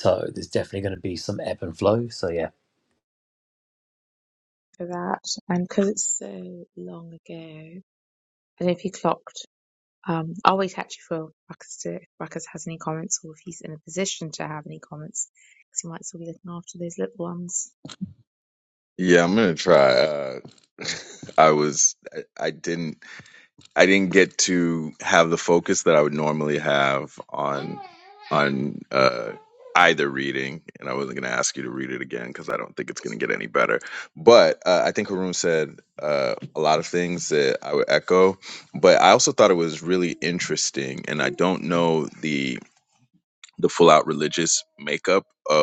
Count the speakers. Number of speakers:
three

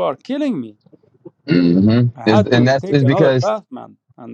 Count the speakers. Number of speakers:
two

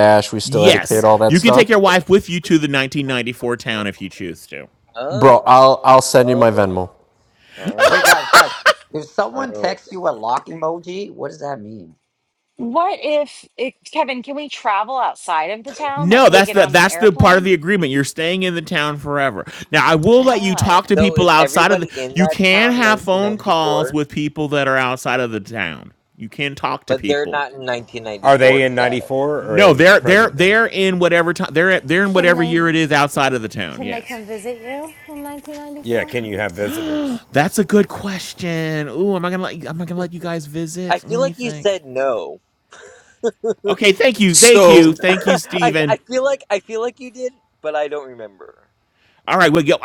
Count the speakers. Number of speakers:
seven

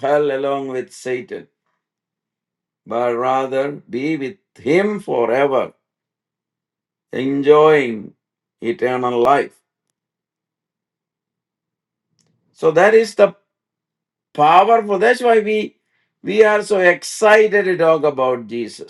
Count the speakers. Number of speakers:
one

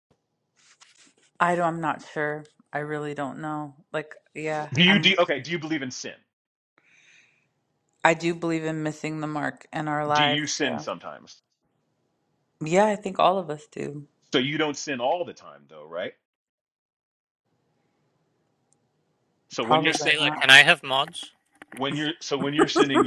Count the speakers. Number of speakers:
three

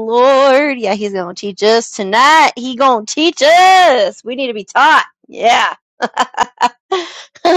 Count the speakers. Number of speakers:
one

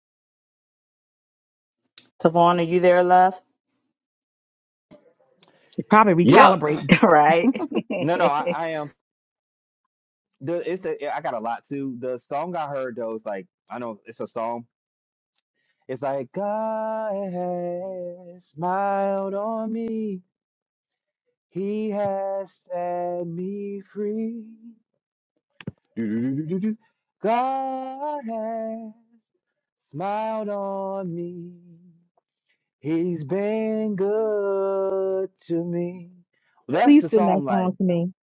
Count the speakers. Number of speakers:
three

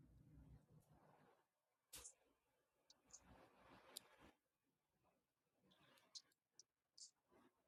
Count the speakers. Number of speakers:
zero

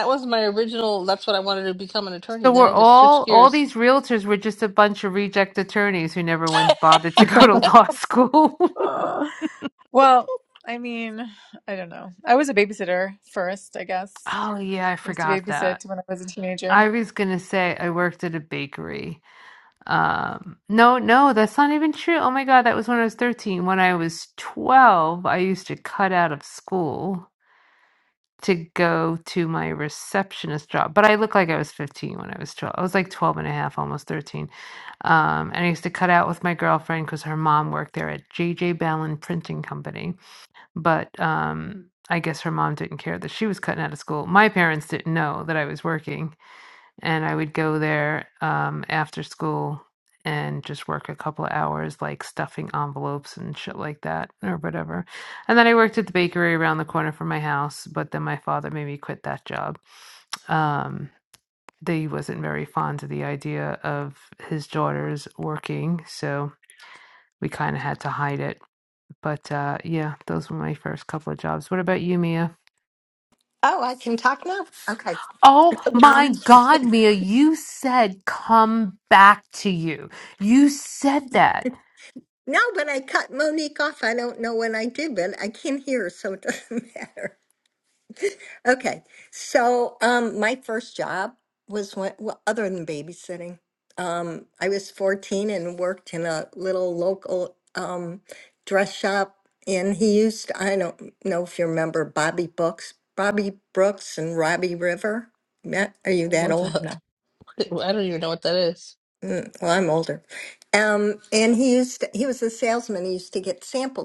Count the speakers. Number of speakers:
four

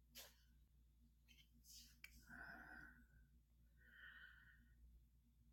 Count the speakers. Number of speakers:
zero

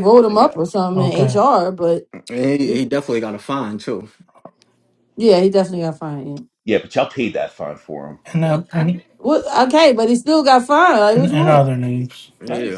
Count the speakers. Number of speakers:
four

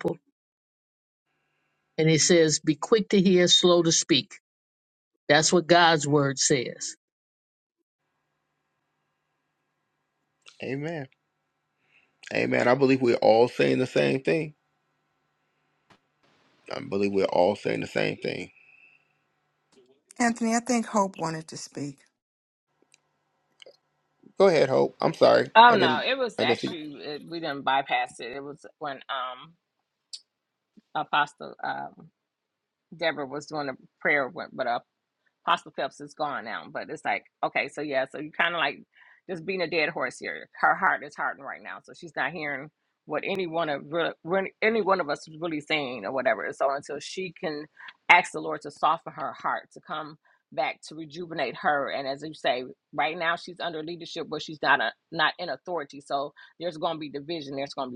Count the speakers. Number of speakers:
four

